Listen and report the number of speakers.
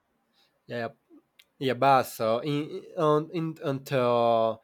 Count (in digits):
1